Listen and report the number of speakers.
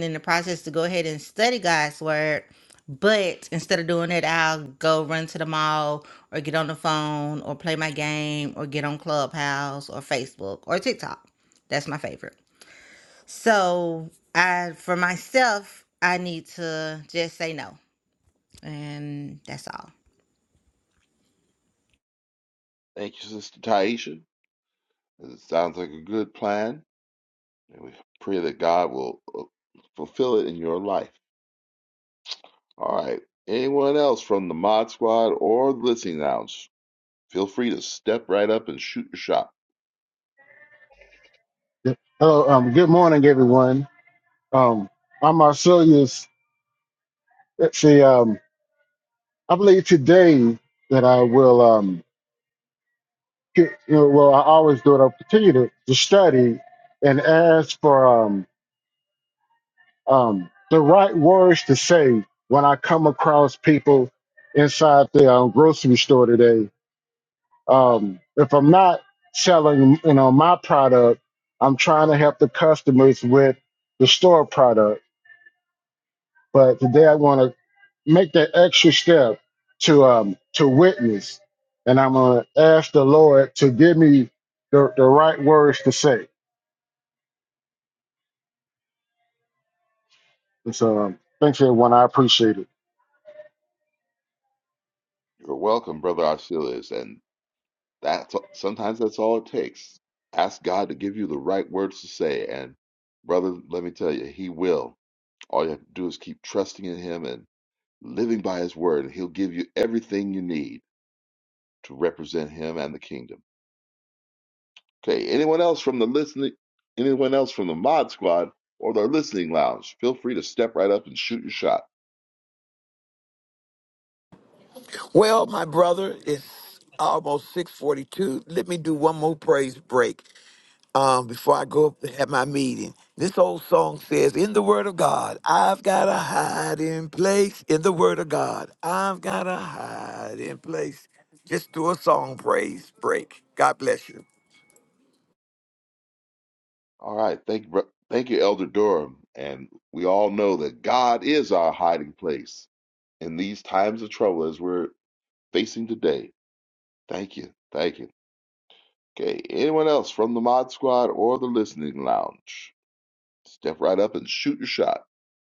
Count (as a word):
four